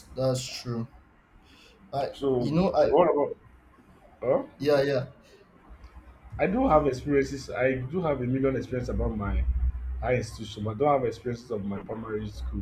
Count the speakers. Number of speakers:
two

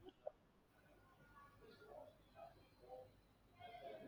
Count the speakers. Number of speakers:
zero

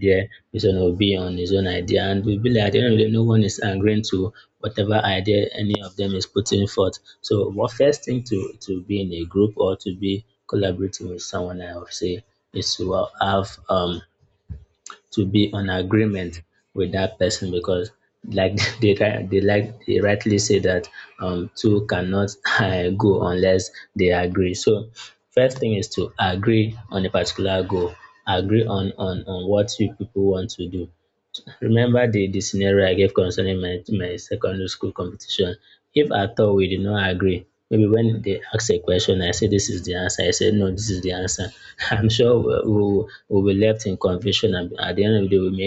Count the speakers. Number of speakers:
one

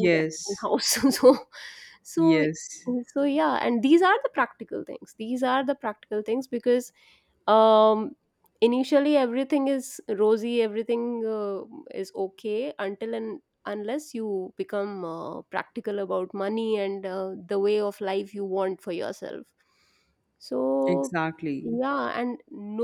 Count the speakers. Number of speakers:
two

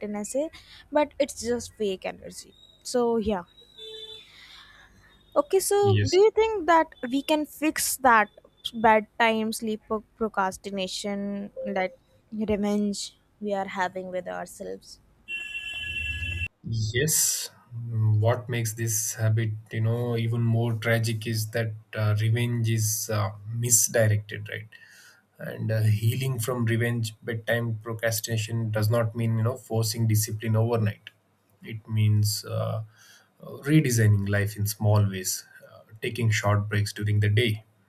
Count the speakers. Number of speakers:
two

